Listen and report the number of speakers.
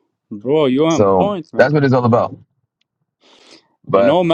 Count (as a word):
two